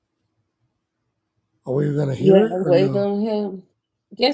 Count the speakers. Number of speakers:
two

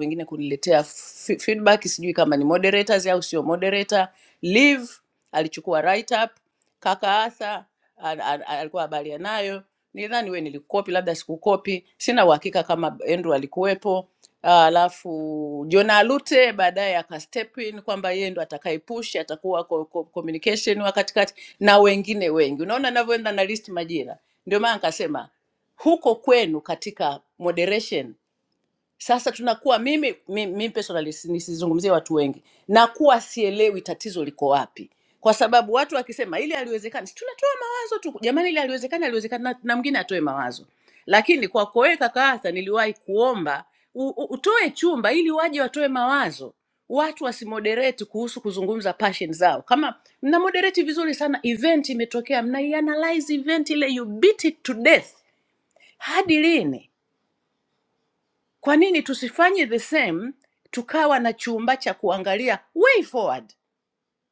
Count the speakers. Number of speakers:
one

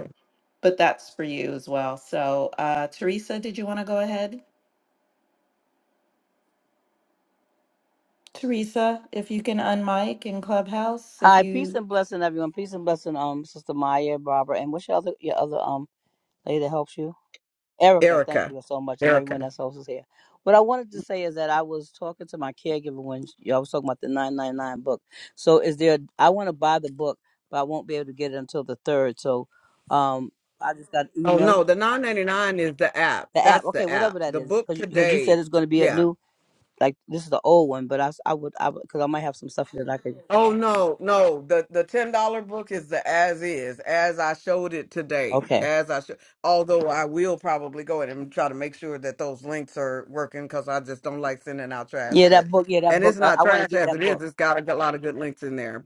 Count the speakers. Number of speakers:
three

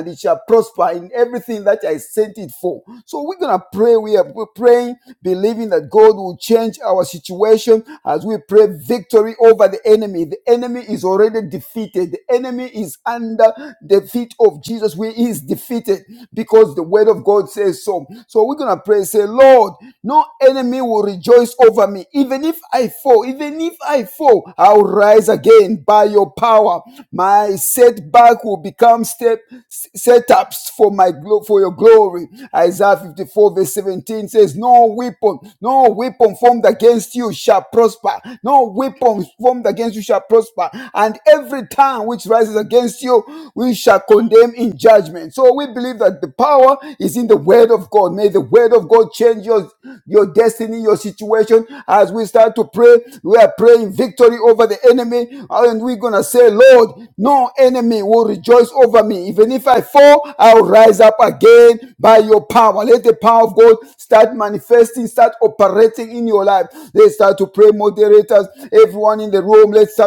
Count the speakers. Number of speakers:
one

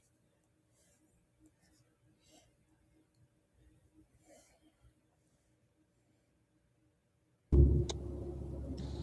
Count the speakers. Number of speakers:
zero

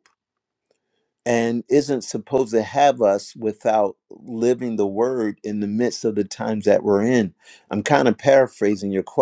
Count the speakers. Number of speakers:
one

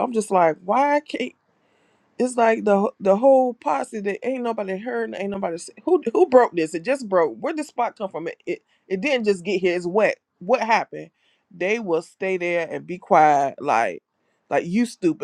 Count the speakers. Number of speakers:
one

